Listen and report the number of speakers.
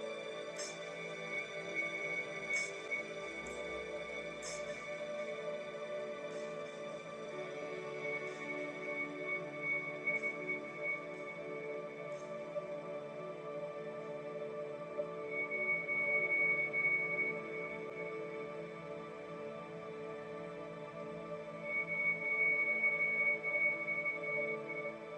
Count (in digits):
0